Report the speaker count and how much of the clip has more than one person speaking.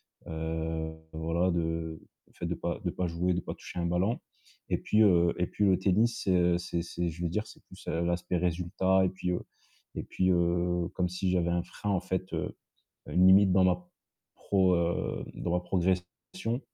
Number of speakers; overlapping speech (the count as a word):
one, no overlap